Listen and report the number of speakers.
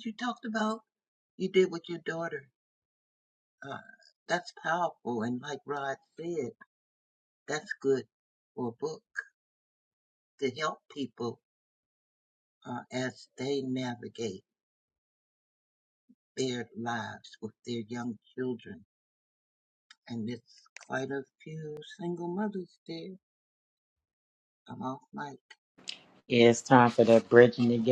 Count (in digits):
2